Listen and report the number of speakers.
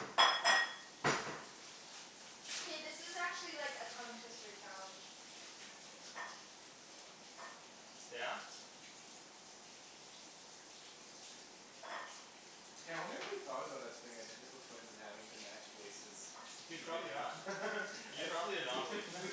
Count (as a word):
three